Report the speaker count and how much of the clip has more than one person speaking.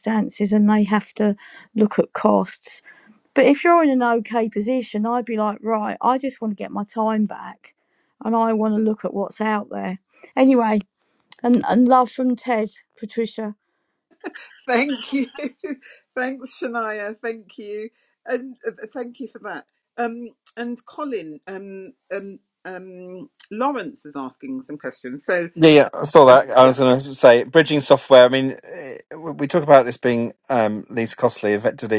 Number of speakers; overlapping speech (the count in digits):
3, about 2%